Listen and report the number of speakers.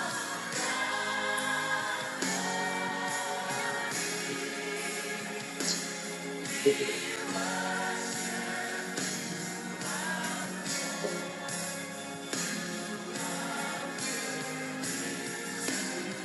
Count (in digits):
0